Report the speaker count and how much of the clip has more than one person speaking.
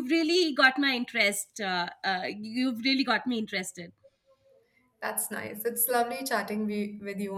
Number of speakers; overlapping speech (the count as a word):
two, no overlap